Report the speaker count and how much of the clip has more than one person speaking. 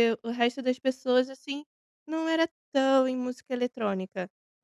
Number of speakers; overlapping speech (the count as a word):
one, no overlap